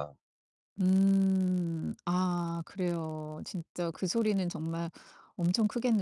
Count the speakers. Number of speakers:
one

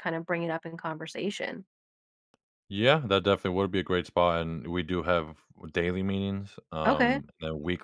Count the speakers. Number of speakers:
two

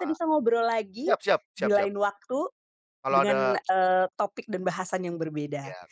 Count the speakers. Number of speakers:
two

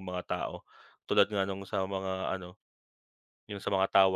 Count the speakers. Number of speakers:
one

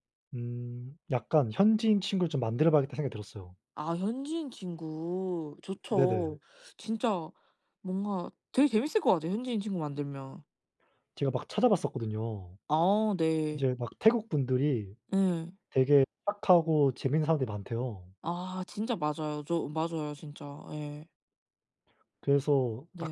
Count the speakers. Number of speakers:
two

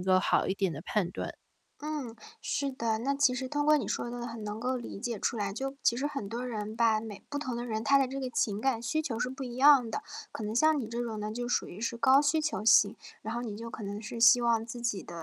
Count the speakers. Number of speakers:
two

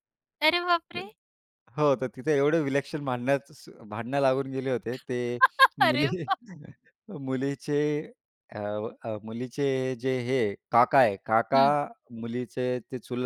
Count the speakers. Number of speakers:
two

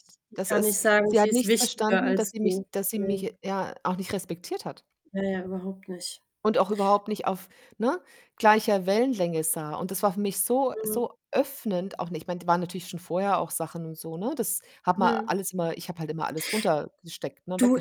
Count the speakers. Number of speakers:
two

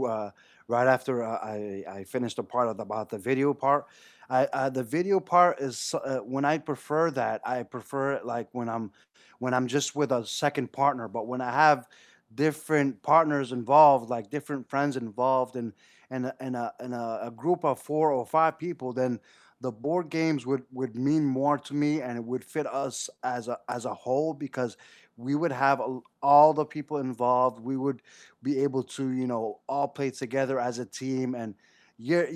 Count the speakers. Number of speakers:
one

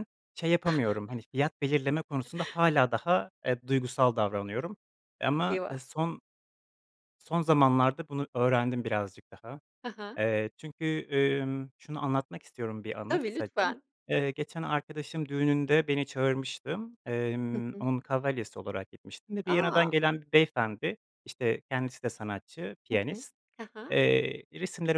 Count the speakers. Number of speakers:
two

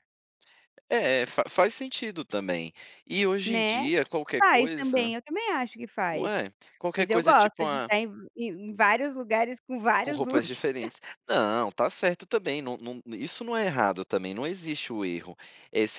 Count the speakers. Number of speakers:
two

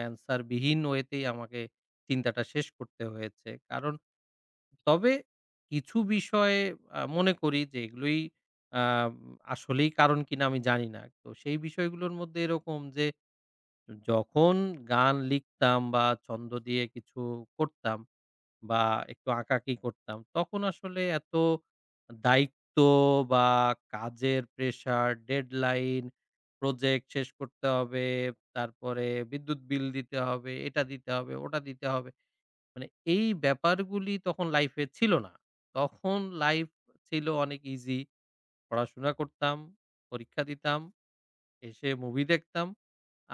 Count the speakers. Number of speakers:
one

